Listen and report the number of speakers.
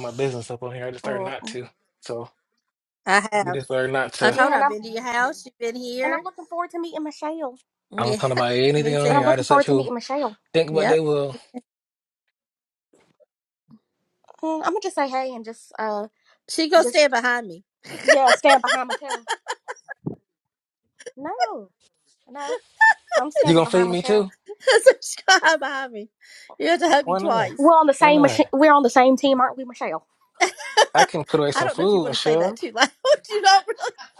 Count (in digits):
3